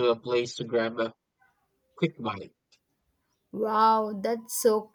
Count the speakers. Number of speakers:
two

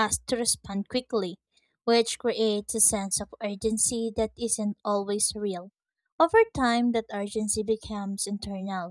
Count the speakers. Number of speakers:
one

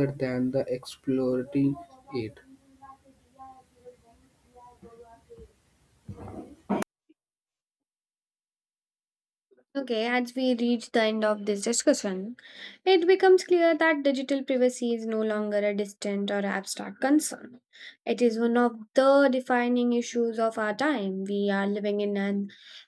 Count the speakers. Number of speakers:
two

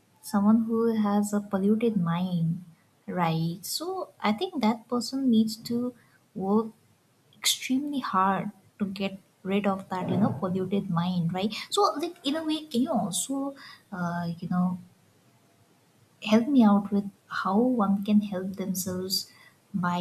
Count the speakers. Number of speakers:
one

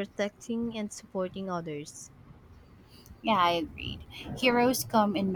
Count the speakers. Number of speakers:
two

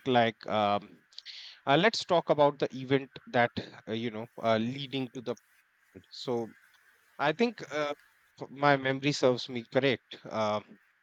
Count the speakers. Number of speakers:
one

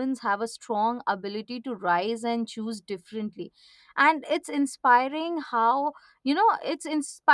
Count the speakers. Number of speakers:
one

